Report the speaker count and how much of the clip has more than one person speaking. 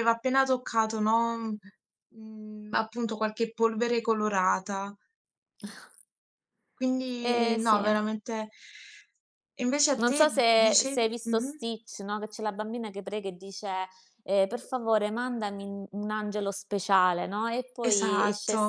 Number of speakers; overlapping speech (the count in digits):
2, about 15%